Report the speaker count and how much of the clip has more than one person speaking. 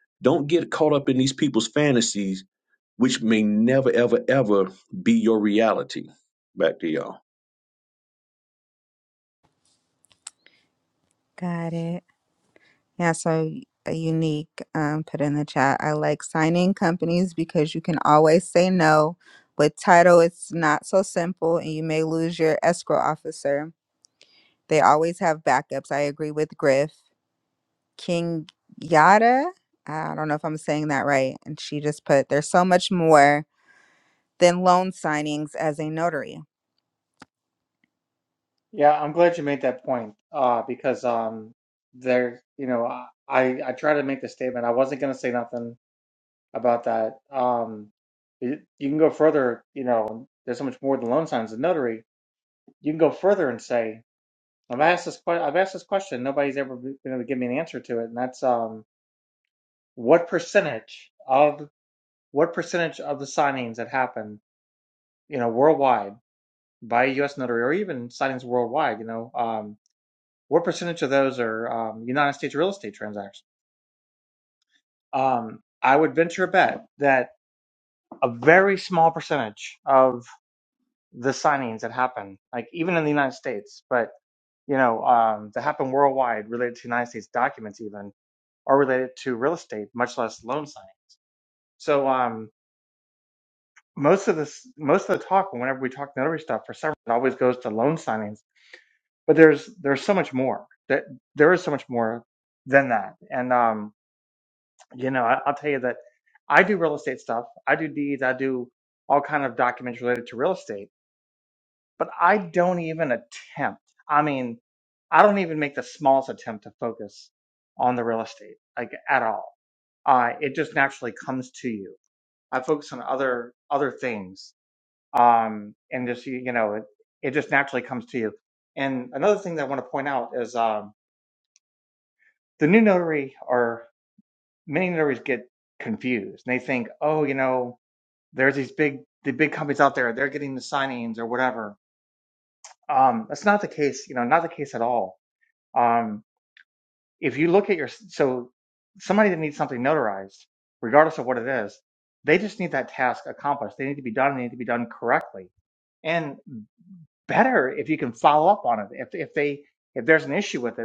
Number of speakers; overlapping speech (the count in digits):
3, no overlap